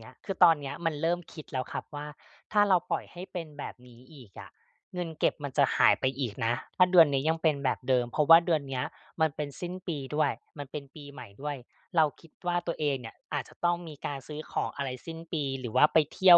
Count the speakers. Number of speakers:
1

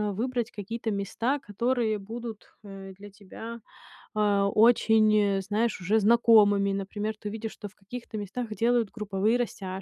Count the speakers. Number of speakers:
1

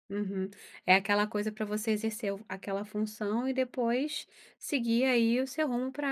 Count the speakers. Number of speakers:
1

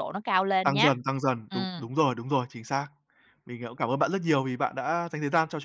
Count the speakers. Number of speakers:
2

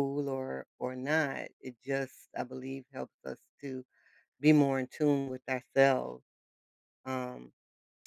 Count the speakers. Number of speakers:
1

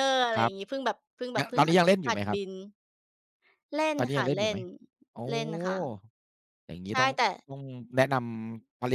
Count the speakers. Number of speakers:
2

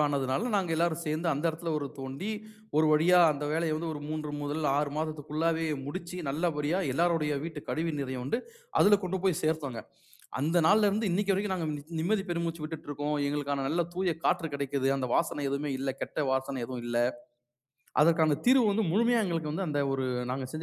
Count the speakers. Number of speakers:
1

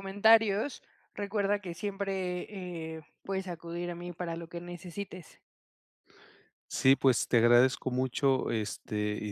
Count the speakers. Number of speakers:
2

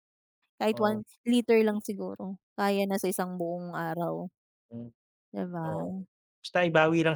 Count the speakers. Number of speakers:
2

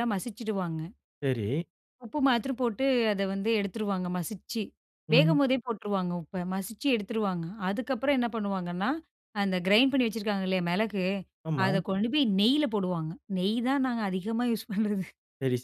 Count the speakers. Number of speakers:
2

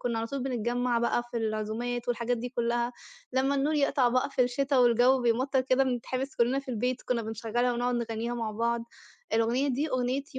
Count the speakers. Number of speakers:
1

